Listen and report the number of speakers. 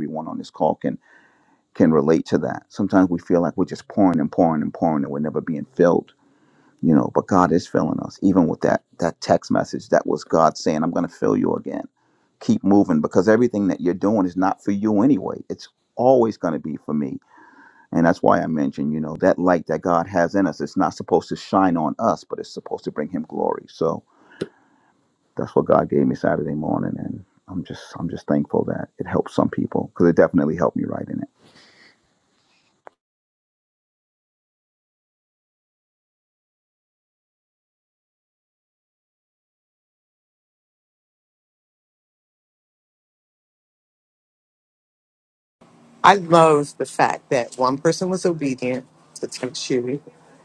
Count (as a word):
two